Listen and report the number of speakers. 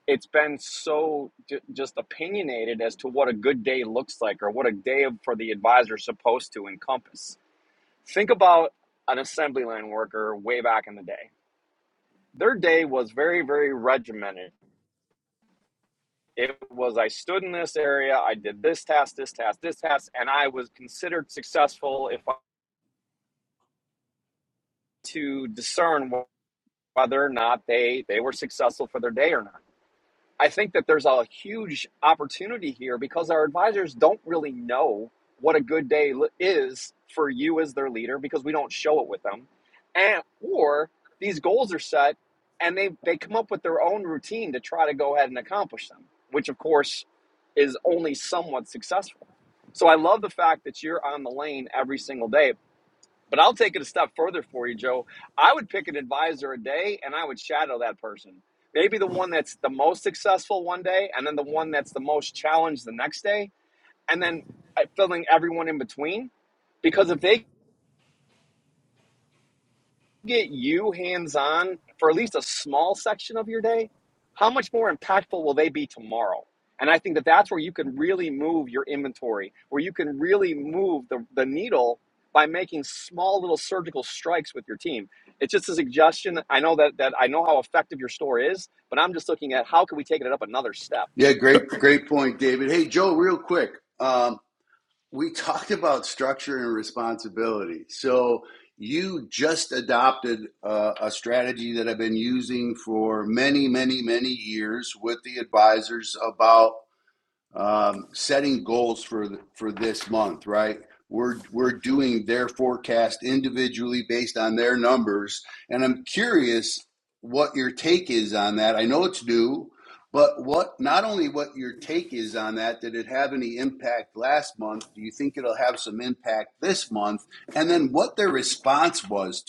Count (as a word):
two